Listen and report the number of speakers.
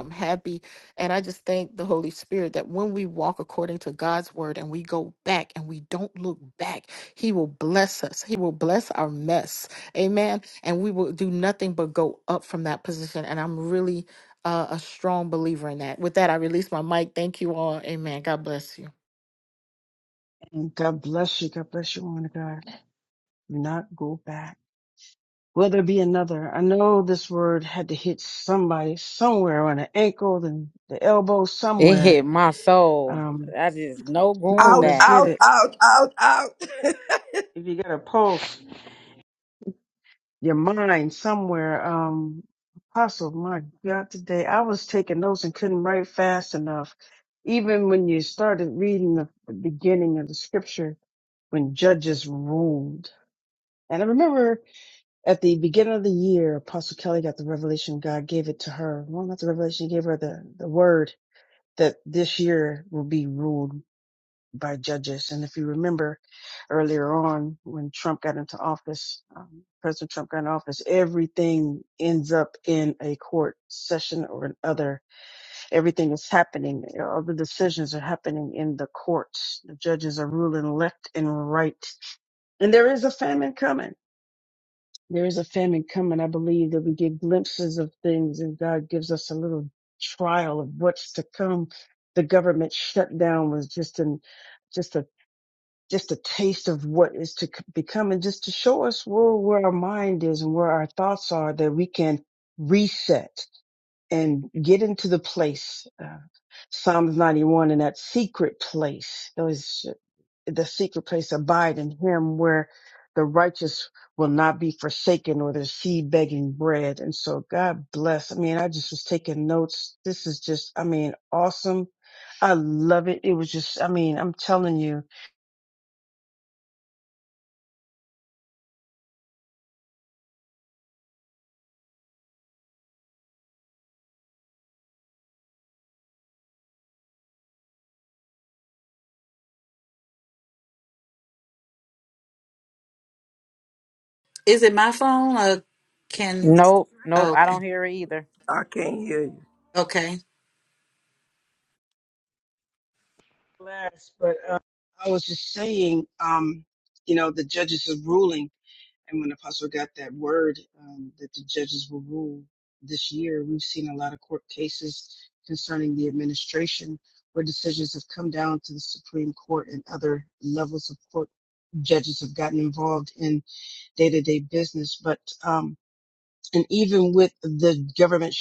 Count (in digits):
5